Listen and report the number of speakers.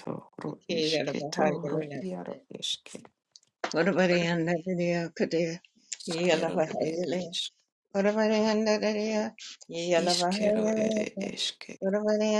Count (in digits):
2